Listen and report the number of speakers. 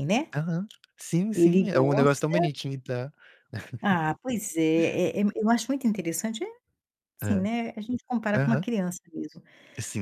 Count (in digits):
2